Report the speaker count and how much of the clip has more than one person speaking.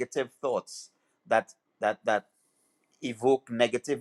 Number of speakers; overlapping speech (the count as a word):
one, no overlap